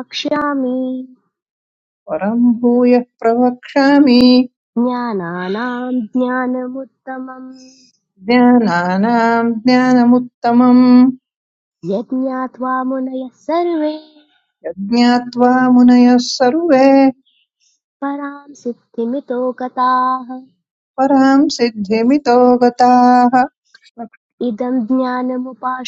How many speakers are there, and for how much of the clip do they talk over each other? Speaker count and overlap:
2, no overlap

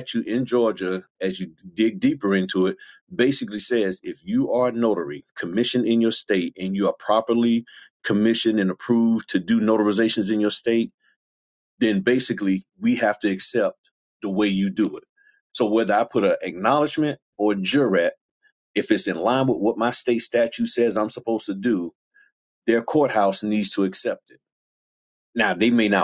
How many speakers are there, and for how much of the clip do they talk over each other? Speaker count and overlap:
1, no overlap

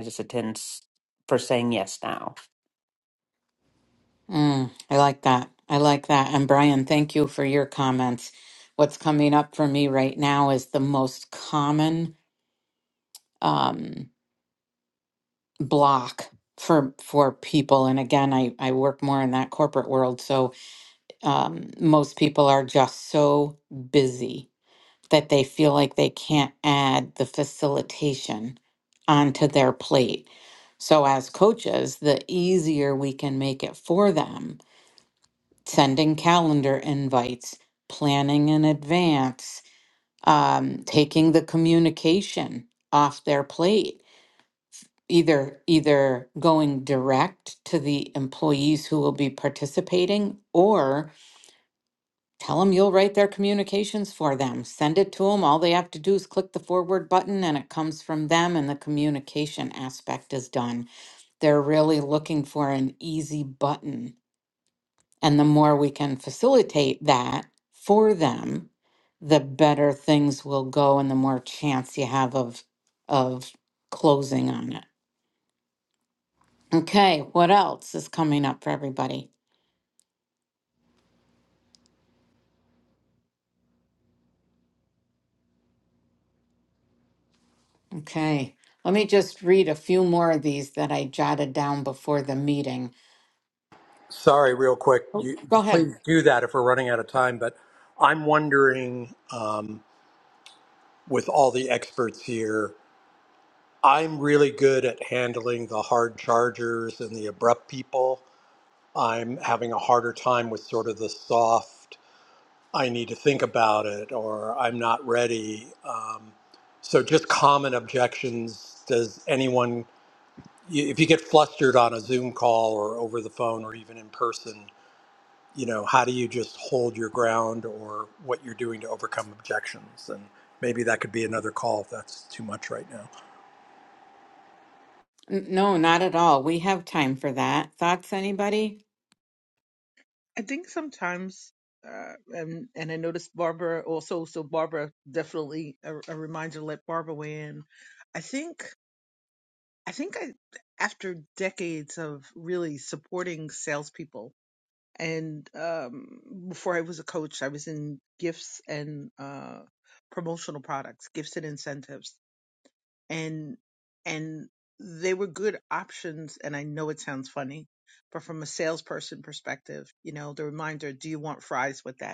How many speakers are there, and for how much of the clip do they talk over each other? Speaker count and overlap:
4, under 1%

